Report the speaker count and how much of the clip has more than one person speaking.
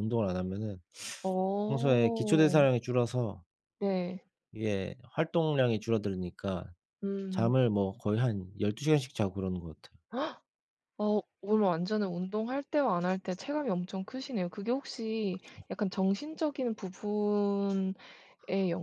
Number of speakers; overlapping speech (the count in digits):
2, about 4%